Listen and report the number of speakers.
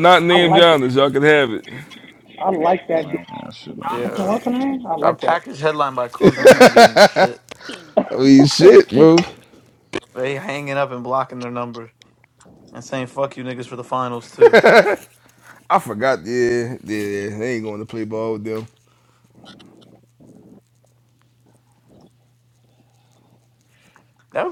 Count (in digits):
4